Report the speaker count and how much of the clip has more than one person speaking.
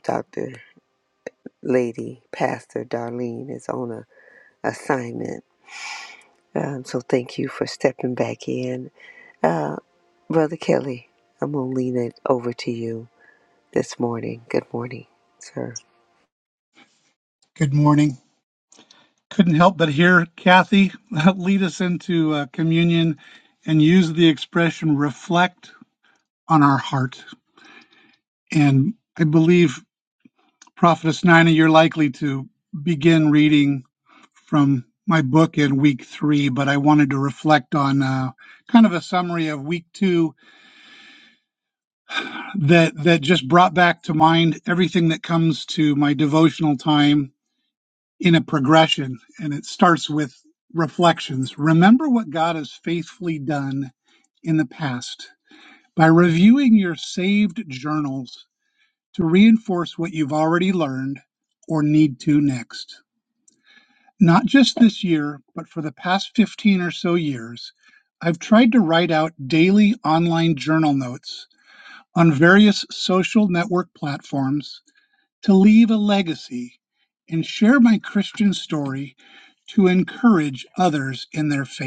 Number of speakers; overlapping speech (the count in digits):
2, no overlap